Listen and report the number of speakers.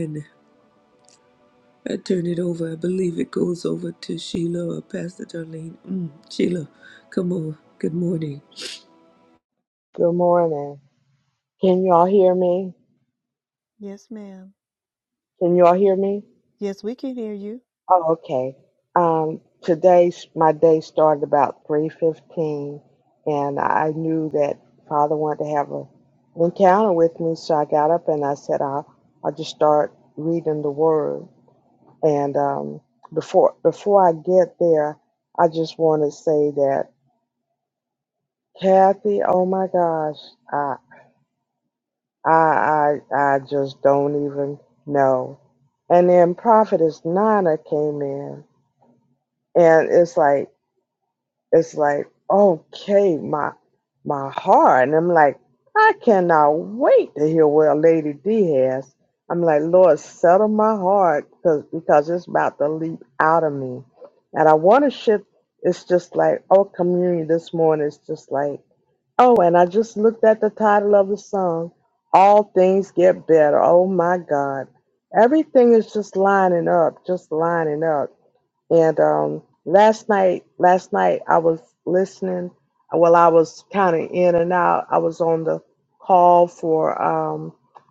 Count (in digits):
3